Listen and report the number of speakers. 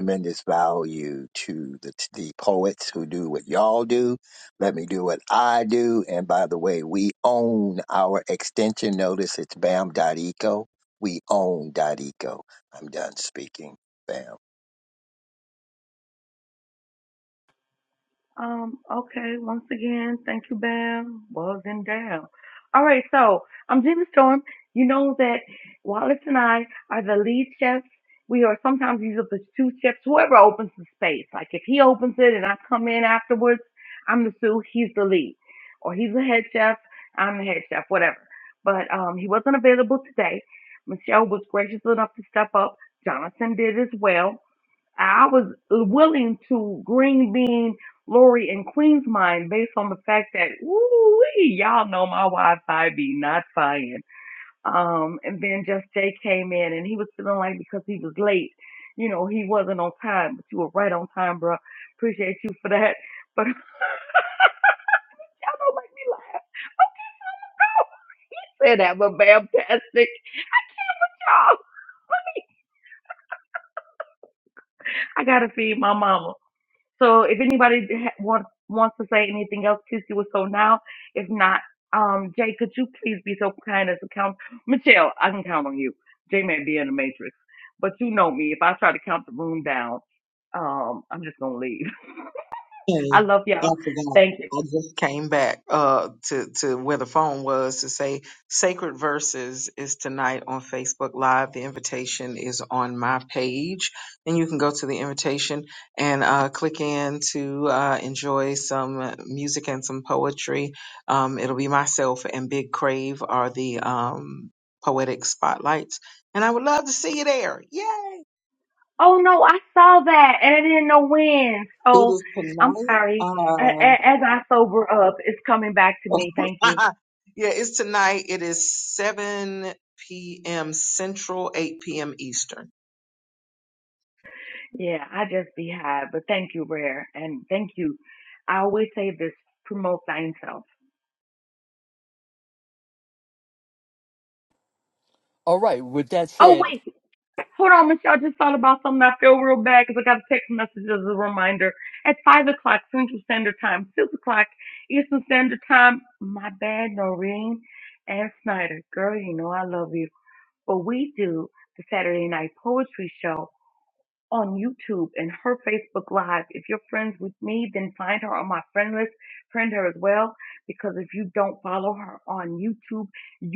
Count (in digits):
4